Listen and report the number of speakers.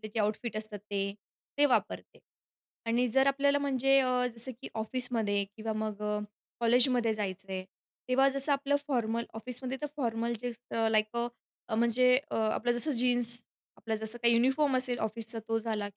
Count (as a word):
one